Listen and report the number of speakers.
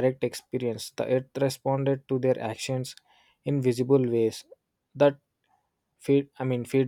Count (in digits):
1